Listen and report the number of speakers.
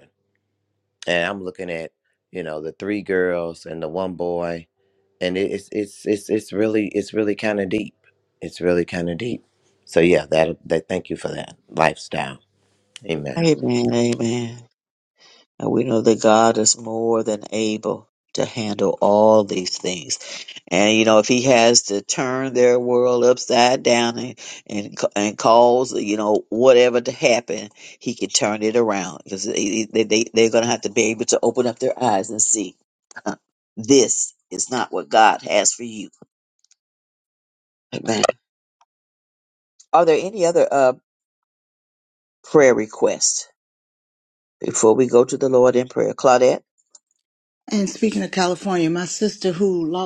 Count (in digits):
3